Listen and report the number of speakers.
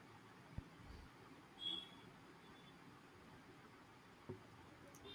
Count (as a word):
zero